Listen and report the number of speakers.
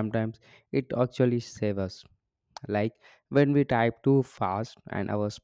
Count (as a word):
one